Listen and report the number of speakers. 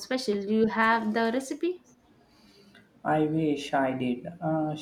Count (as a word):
two